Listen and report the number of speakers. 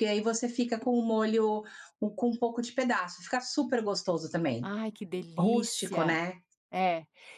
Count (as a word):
two